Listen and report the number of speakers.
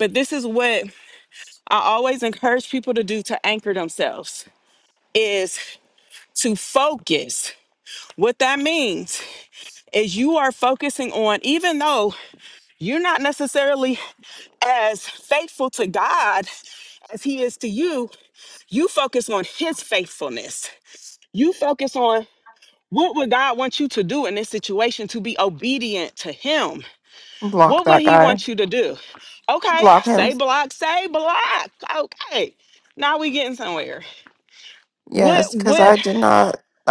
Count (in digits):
2